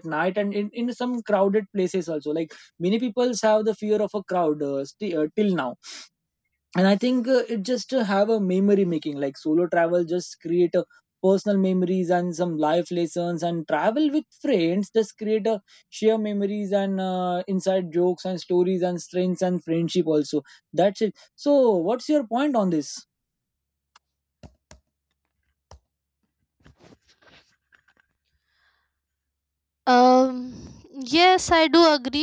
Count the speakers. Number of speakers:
2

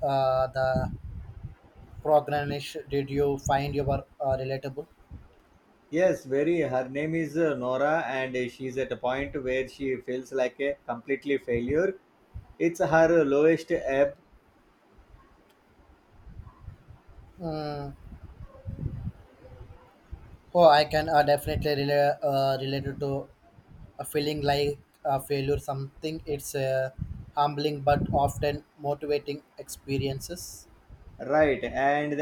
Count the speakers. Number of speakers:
2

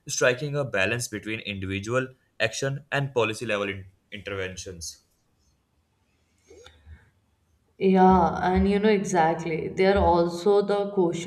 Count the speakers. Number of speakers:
2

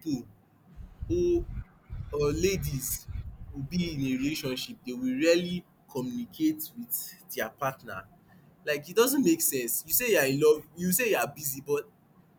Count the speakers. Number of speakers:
1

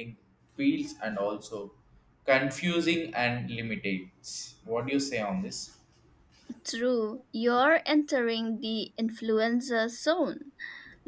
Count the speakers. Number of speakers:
2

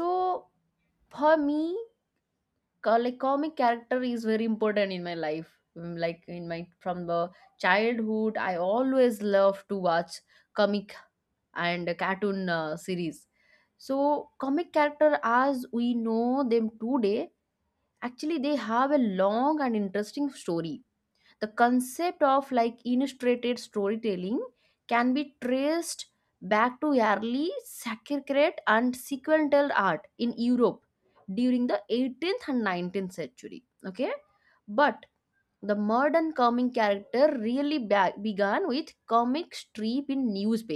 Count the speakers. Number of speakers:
1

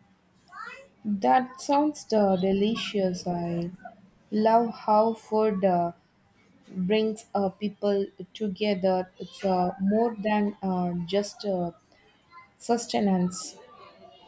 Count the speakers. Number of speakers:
1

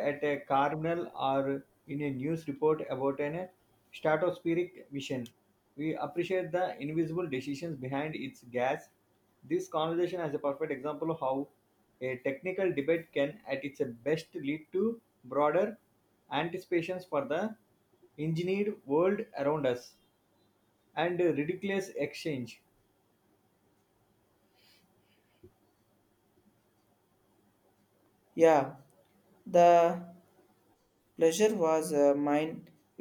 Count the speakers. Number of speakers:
2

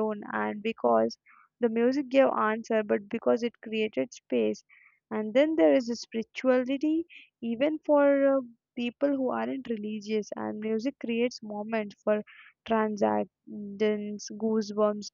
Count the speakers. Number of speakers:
1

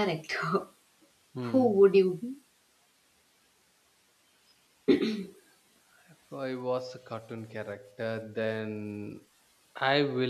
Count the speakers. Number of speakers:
2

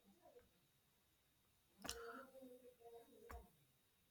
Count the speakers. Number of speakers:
0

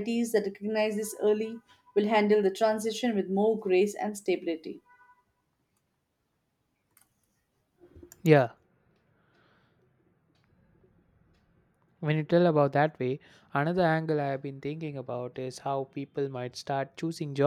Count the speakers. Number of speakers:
2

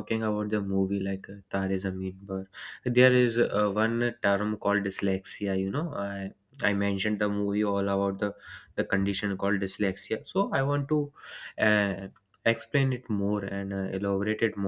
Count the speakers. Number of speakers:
1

